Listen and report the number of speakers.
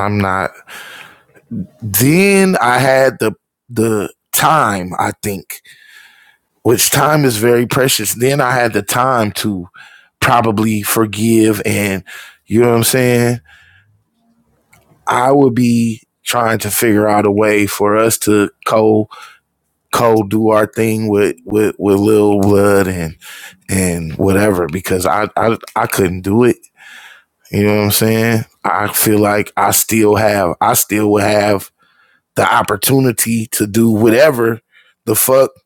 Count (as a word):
one